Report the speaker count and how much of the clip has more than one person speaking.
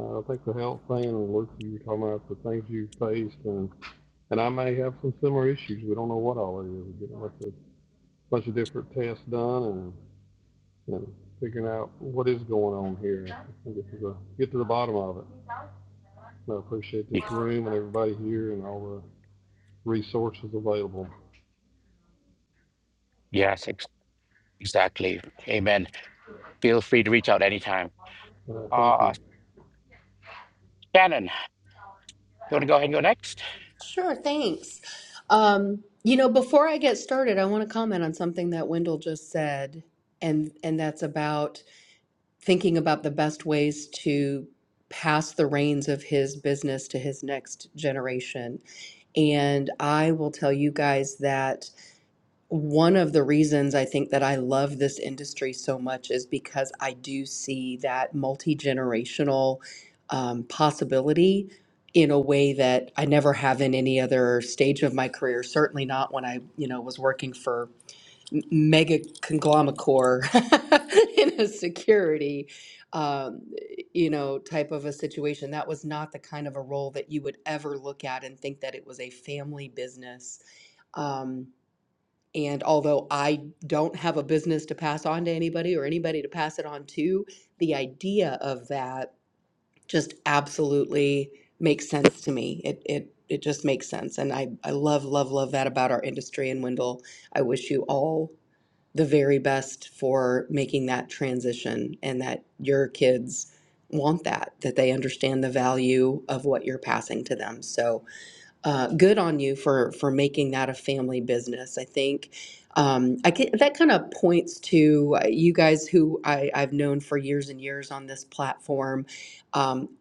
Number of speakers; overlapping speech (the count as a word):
three, under 1%